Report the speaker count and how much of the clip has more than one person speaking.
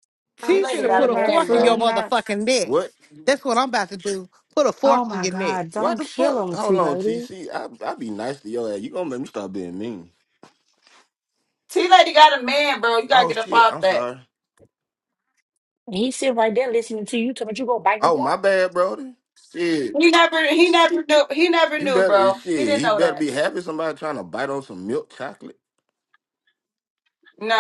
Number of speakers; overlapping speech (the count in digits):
4, about 24%